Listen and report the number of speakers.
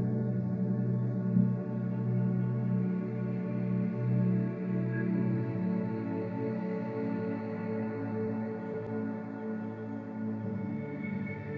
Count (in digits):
0